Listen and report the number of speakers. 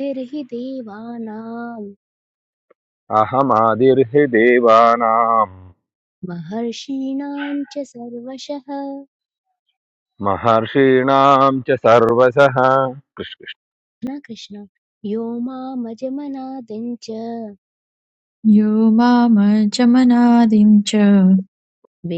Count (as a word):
three